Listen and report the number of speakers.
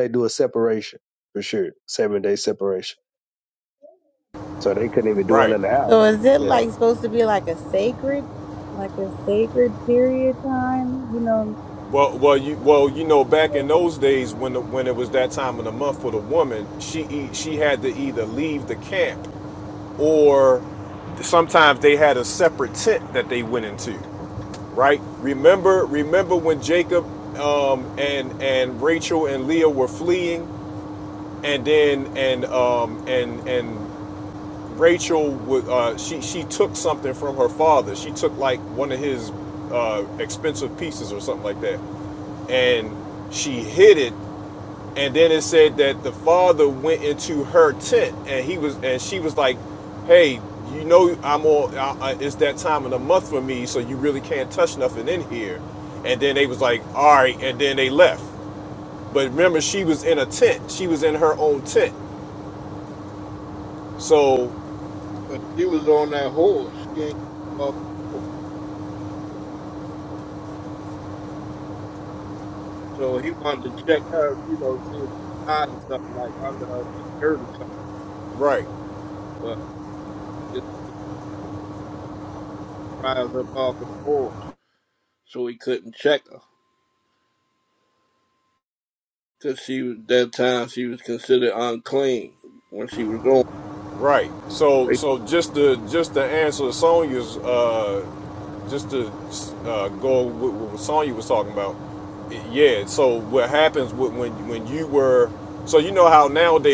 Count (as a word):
four